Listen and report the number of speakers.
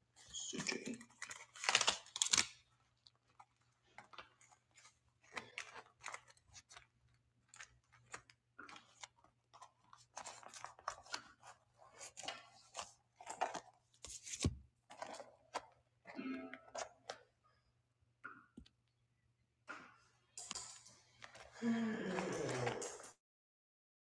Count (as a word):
zero